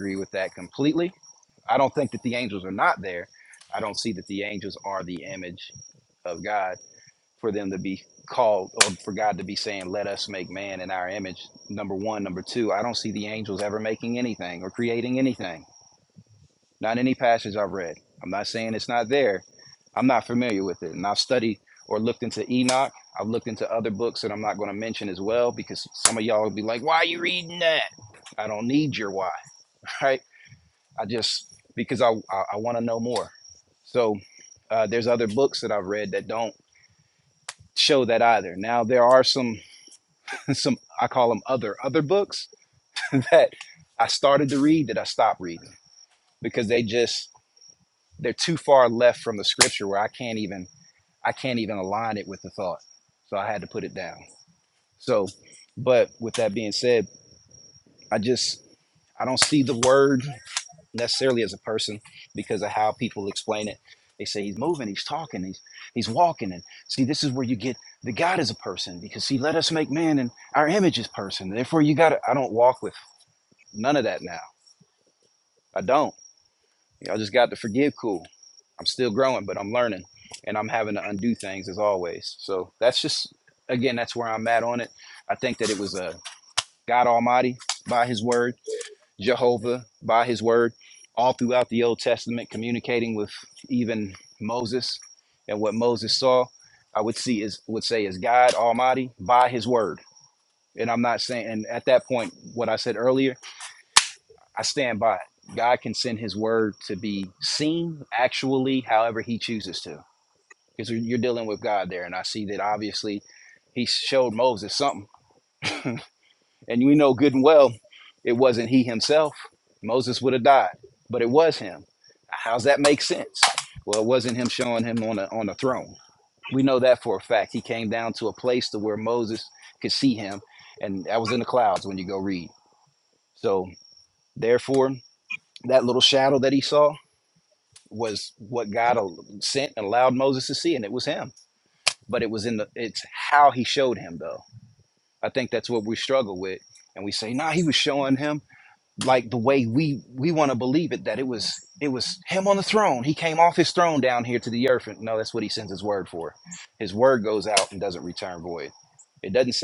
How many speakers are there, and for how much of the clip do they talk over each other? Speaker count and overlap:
1, no overlap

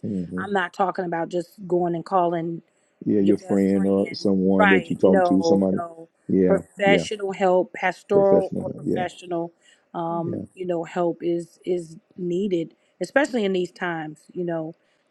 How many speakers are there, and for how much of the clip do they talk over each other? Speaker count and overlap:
2, about 26%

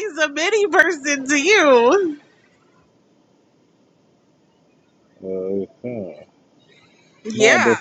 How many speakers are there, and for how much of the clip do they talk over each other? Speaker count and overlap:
2, about 6%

